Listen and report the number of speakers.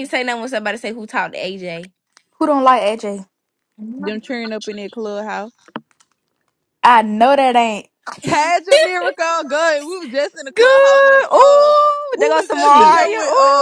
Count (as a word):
three